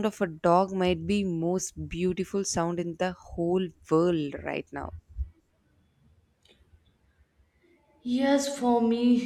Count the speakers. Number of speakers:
2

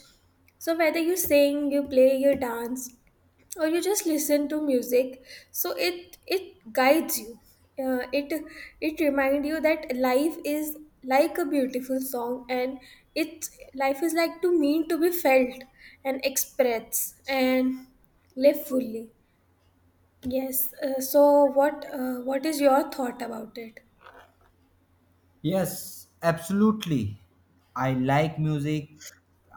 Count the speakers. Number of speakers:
2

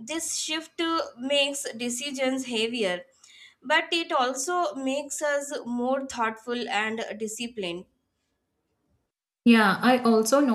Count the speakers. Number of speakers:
2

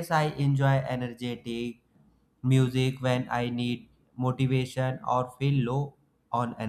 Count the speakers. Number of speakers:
1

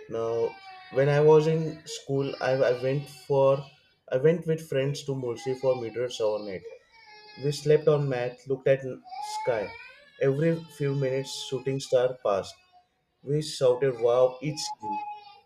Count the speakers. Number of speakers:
1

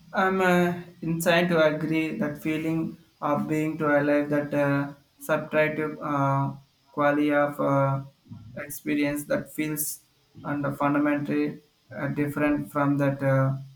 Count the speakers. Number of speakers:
1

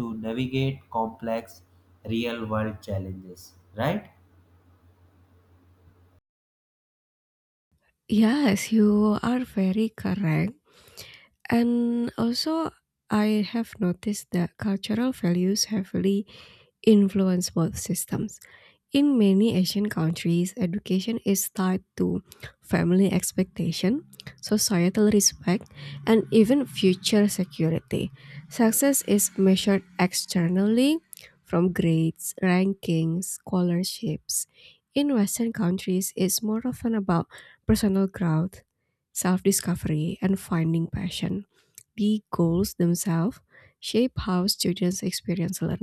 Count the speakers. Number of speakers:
2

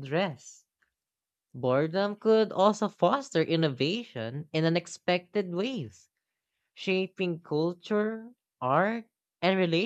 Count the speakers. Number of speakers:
1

